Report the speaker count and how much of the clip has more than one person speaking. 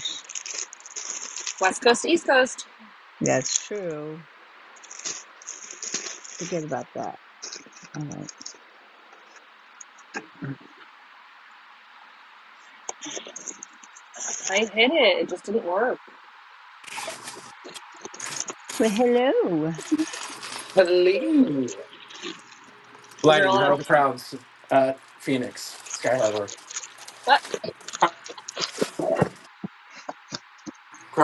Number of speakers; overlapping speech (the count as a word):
three, about 2%